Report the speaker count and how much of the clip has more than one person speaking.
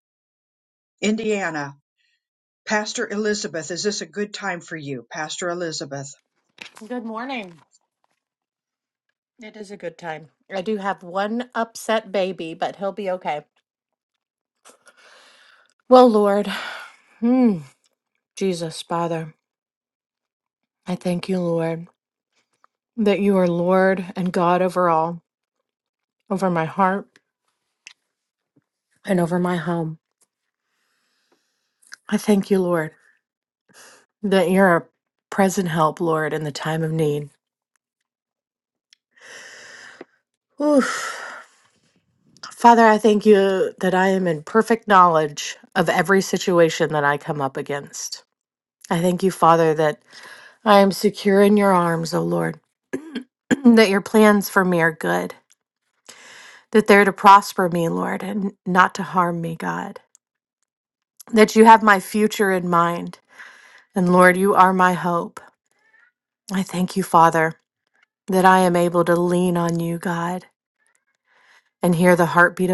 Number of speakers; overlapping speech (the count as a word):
two, no overlap